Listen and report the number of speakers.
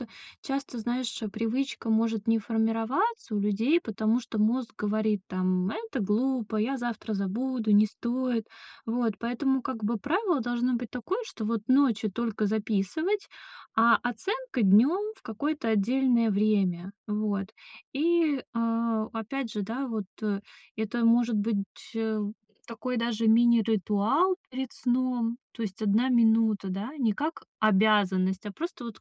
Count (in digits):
1